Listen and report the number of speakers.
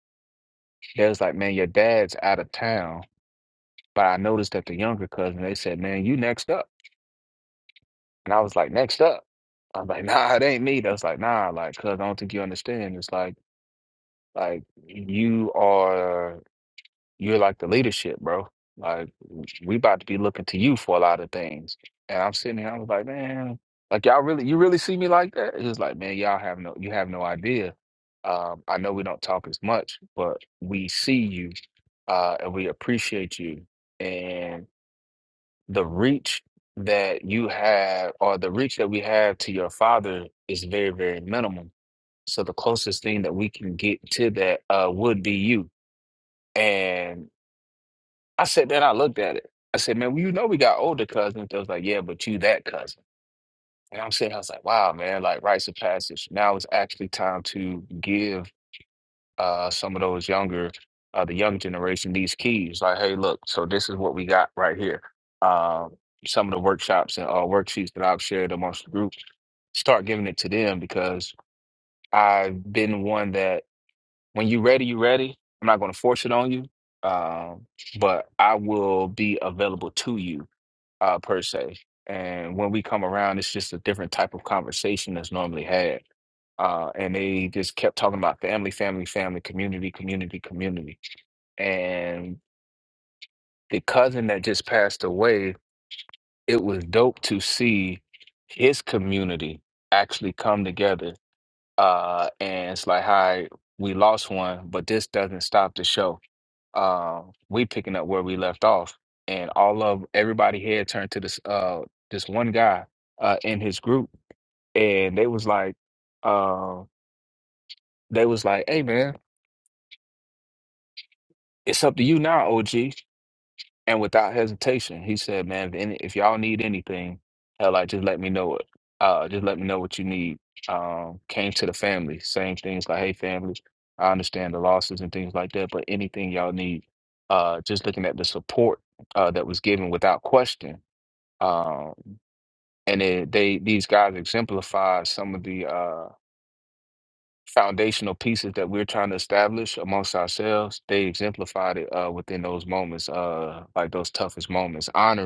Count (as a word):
one